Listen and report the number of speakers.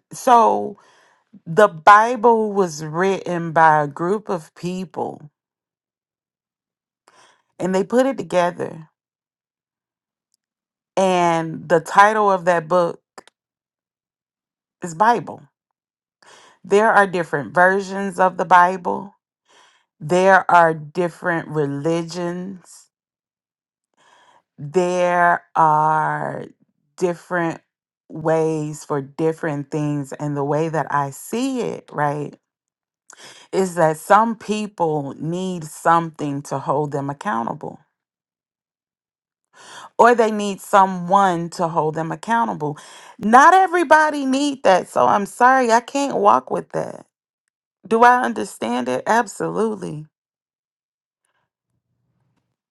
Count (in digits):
1